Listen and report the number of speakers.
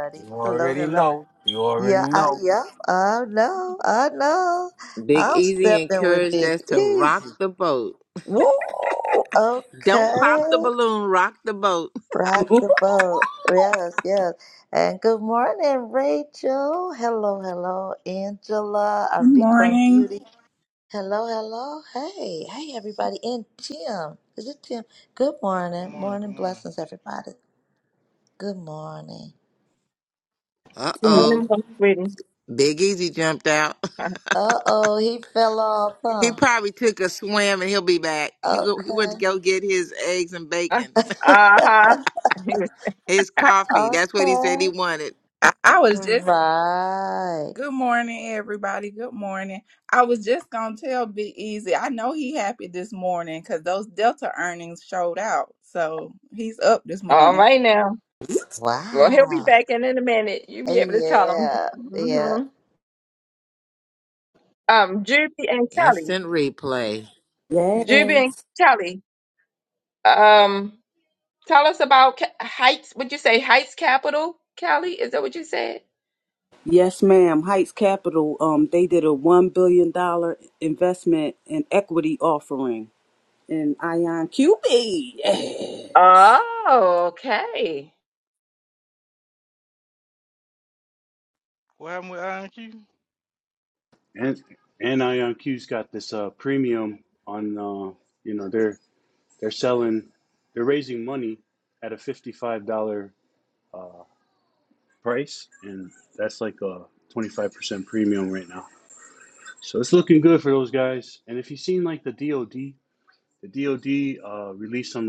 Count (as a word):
eight